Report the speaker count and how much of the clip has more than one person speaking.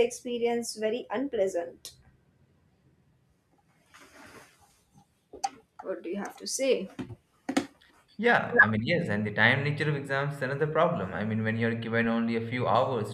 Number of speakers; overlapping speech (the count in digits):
2, no overlap